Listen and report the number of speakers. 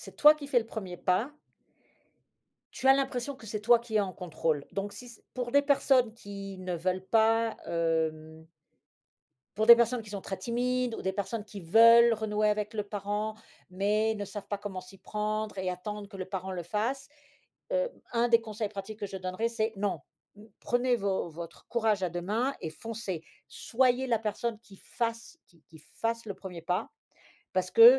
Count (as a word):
one